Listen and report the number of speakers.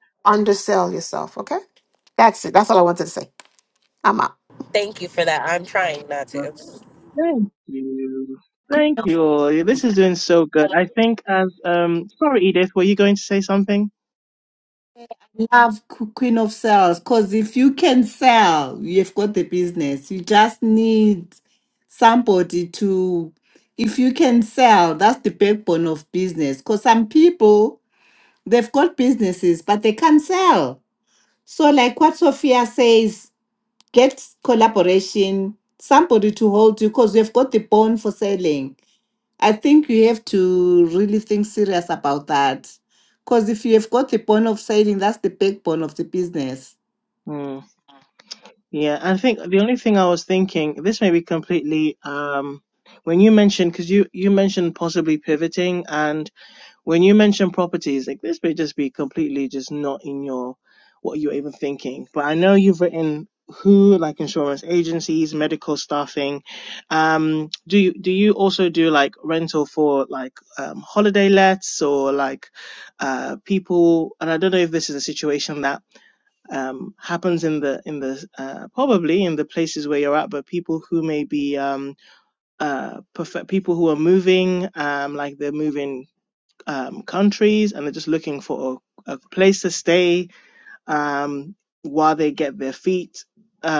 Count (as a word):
four